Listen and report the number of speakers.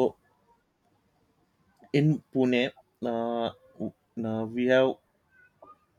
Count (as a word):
one